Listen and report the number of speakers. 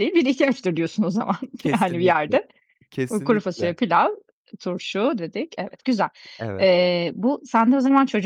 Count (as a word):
two